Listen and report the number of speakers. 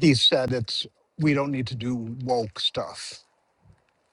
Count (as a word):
one